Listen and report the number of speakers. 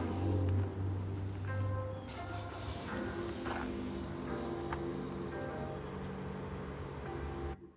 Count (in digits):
0